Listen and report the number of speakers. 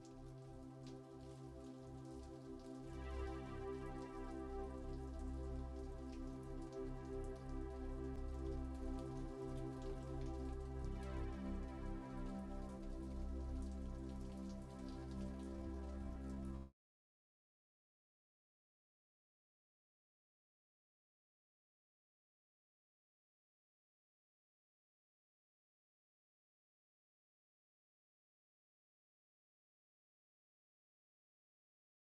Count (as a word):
zero